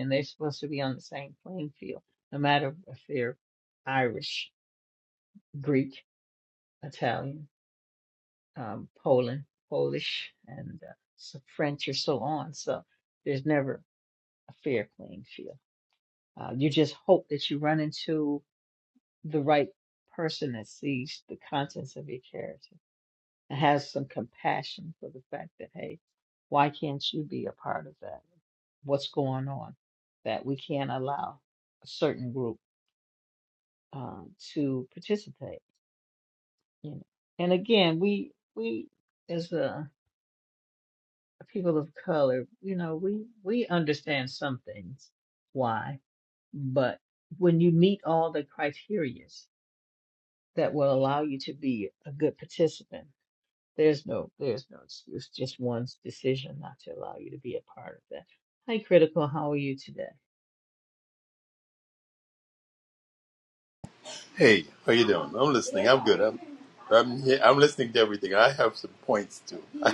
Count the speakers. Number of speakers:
two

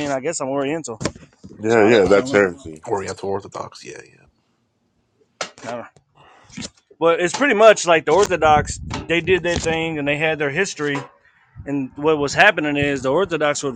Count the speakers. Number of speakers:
three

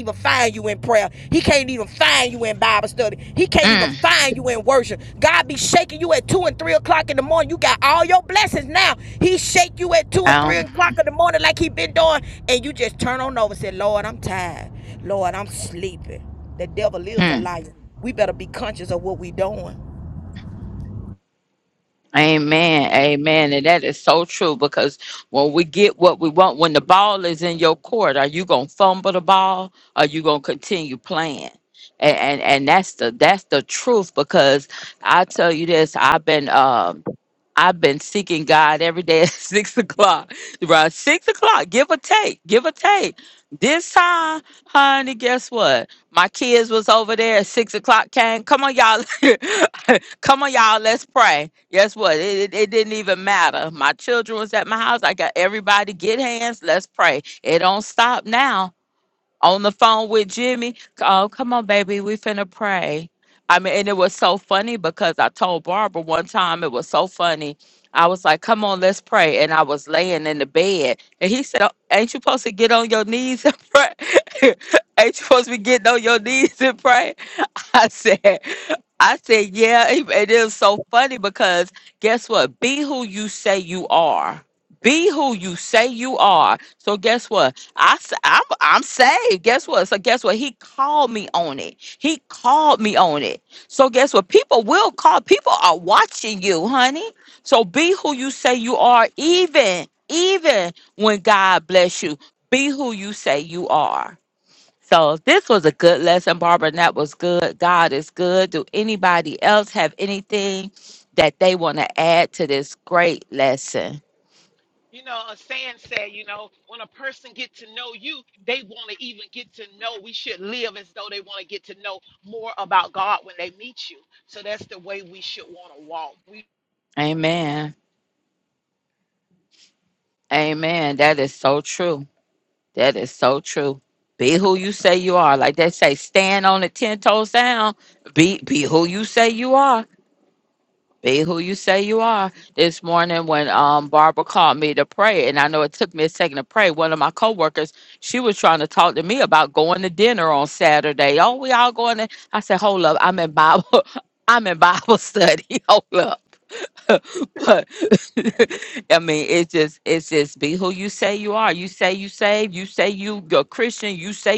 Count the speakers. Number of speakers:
three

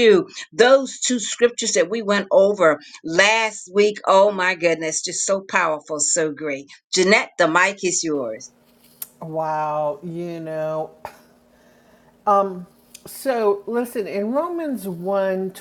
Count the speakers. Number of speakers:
two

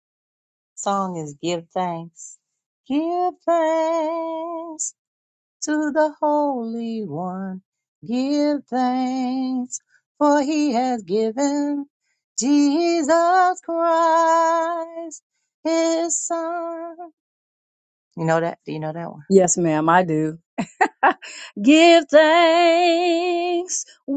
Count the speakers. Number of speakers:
two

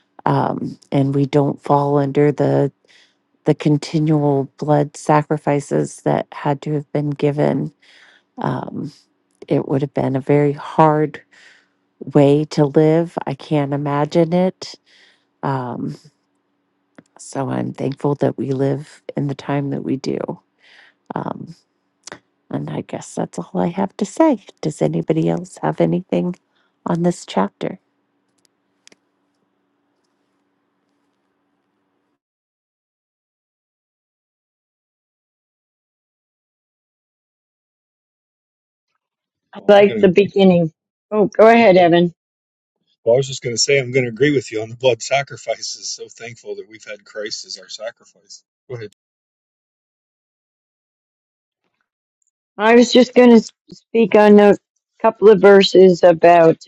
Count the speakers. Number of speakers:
three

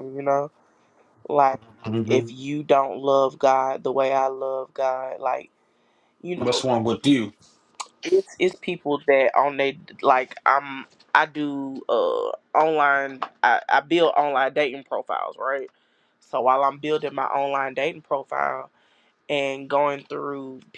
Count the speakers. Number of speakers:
two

